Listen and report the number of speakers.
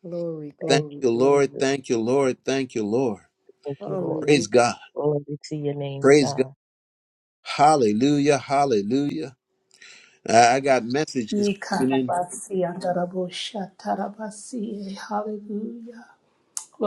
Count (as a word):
four